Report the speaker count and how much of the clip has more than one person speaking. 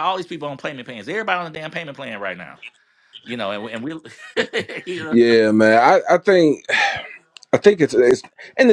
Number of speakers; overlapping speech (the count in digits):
2, about 2%